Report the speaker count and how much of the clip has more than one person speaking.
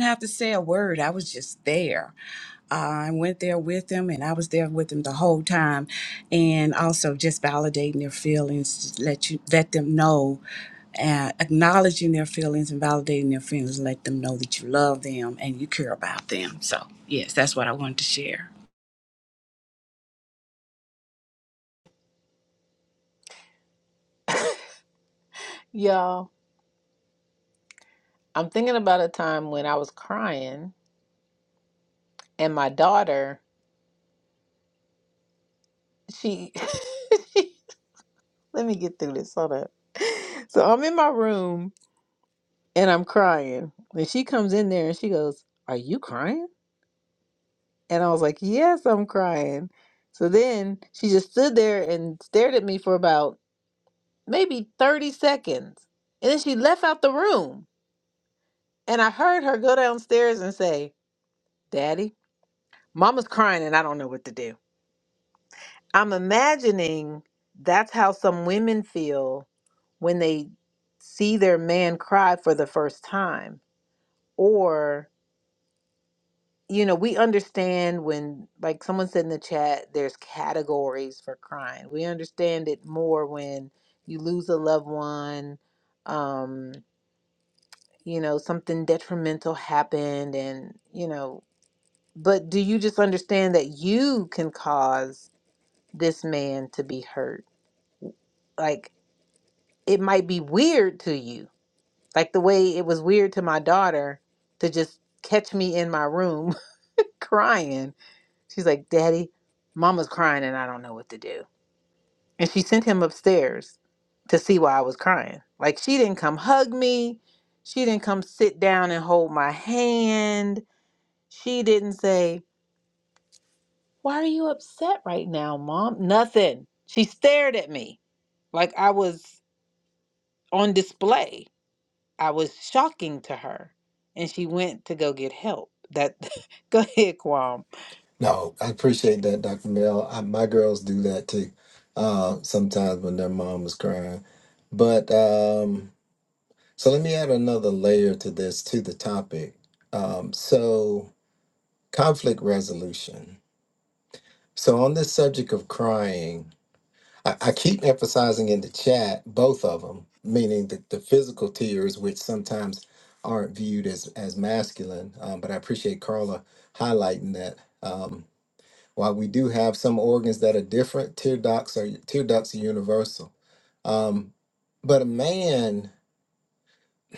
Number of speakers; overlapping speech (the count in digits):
3, no overlap